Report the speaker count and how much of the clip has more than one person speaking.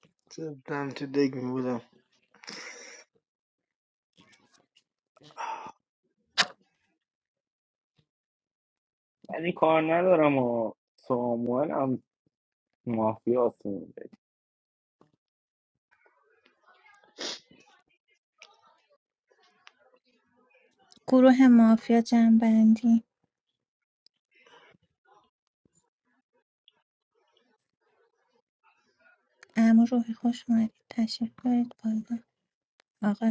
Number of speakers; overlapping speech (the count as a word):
three, no overlap